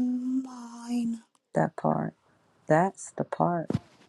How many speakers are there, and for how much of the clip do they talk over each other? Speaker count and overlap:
two, no overlap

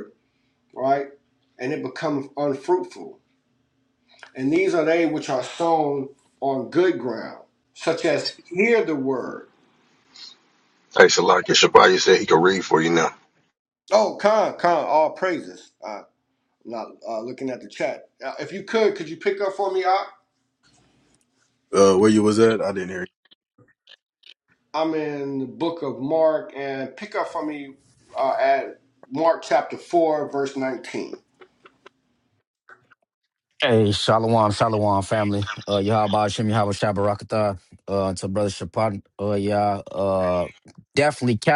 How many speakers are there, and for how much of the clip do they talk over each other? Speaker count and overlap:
four, no overlap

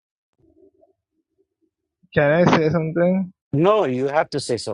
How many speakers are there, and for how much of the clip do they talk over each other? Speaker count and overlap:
two, no overlap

